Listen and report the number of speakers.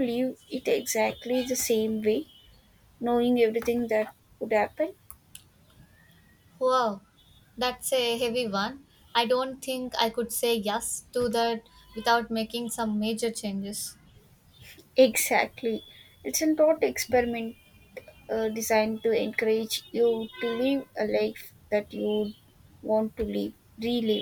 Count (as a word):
two